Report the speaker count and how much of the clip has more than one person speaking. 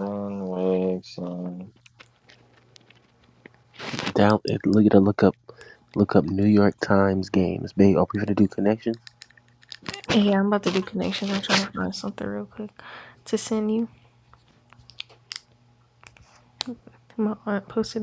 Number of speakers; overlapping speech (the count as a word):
three, no overlap